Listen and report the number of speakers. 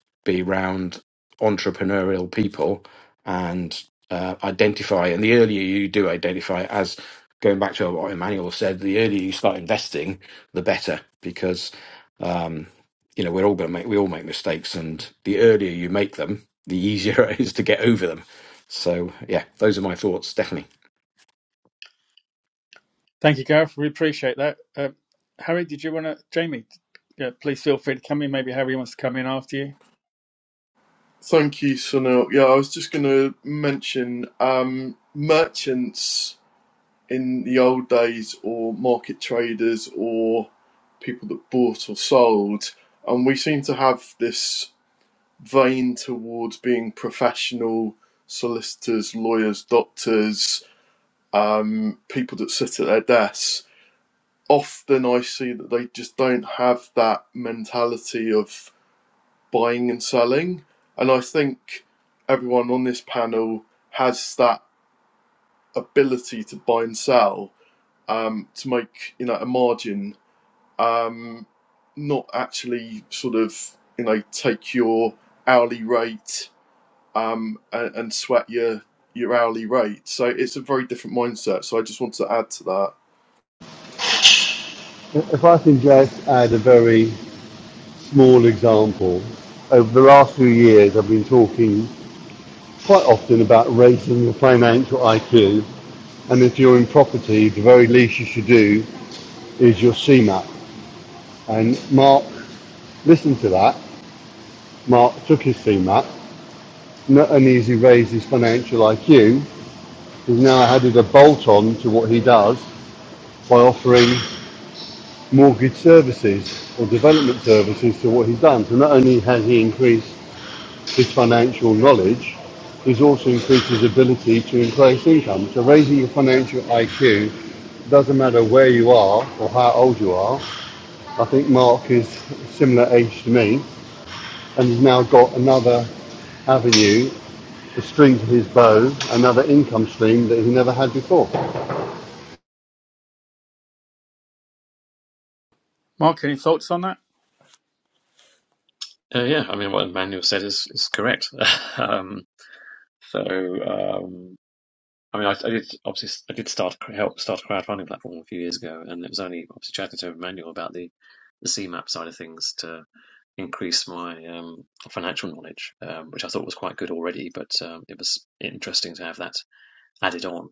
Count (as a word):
five